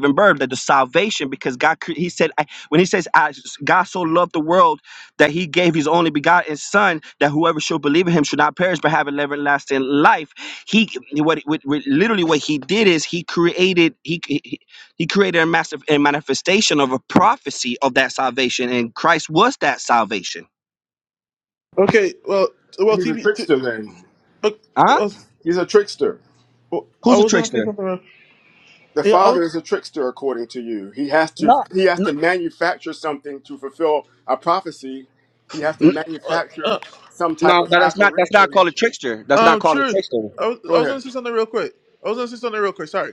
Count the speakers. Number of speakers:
three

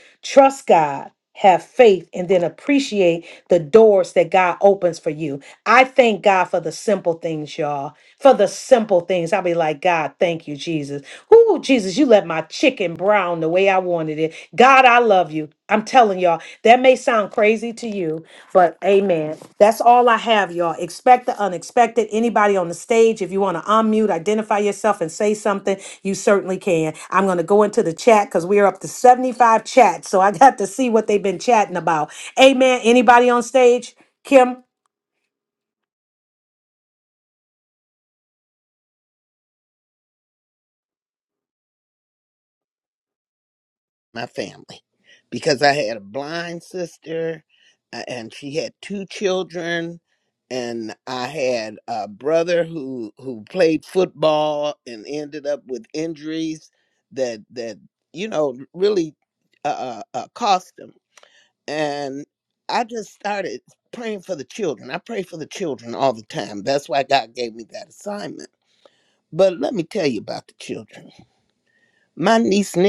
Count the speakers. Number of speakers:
two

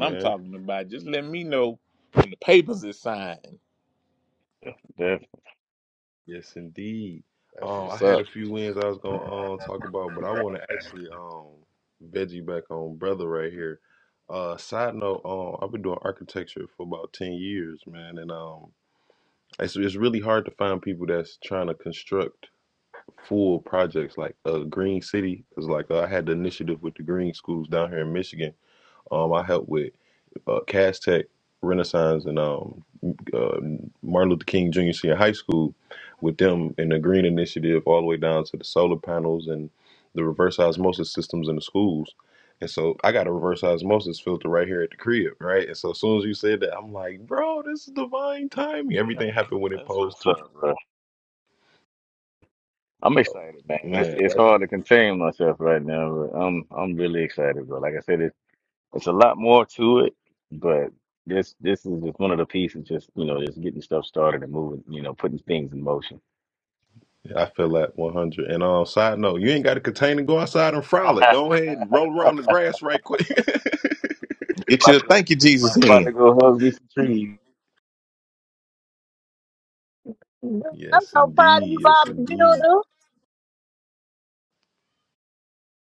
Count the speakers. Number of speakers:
four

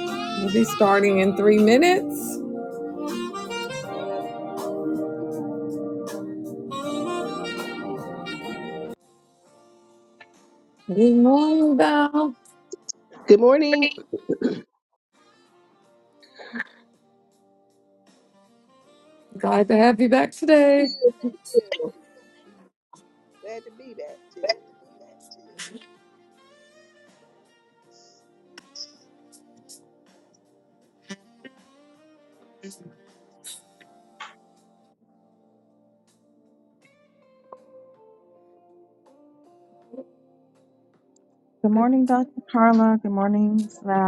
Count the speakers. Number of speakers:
three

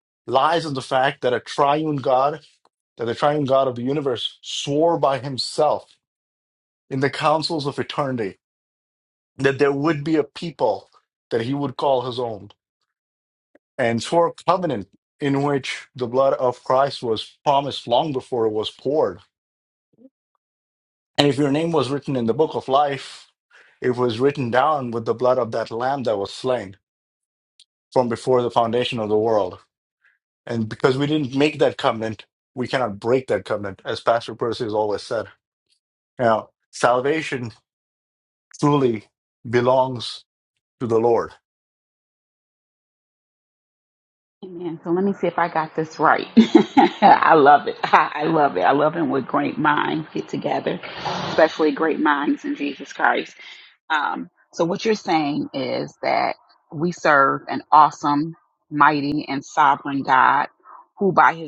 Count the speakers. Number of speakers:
two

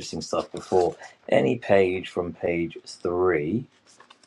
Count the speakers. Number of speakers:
one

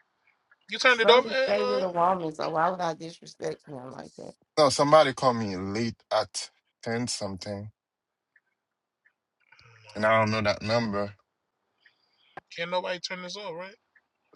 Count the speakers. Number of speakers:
three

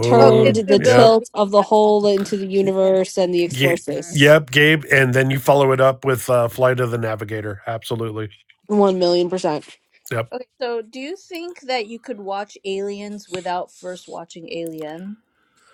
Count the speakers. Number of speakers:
three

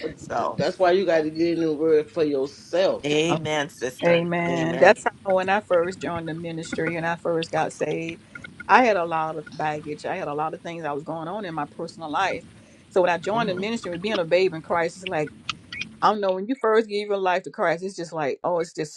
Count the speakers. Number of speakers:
three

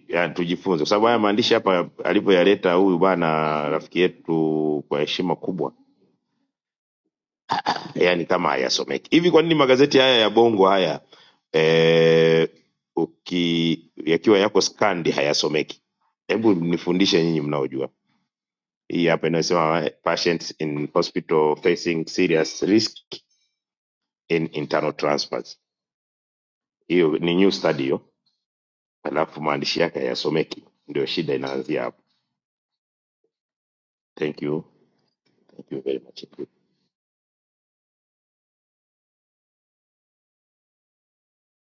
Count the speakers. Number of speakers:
one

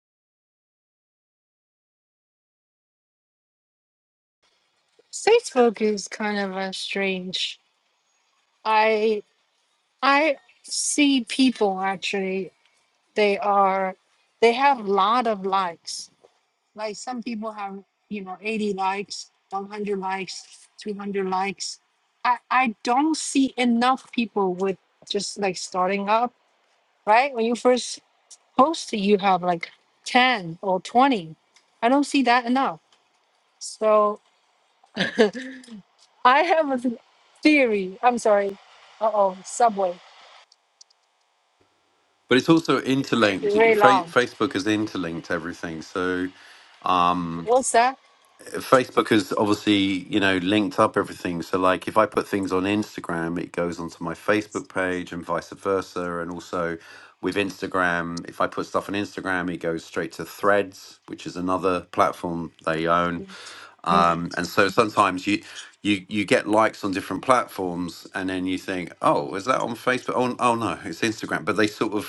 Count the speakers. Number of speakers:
two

